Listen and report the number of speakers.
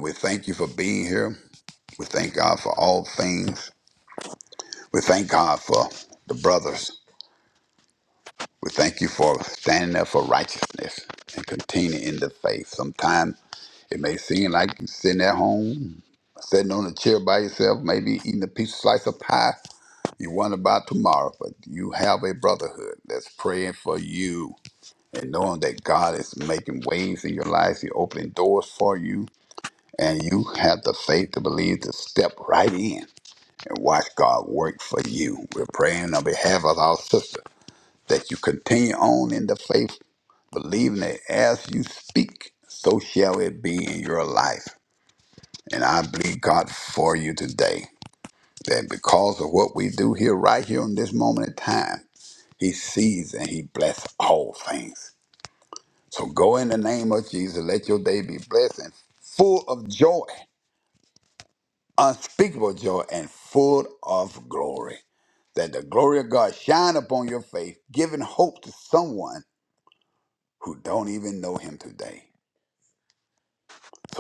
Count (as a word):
one